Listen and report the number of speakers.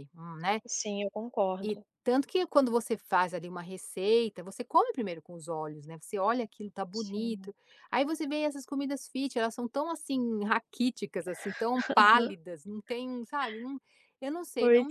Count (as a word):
two